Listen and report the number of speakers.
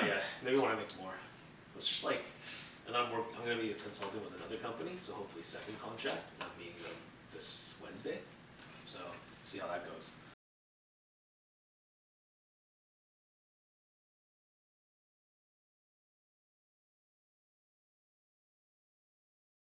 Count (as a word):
one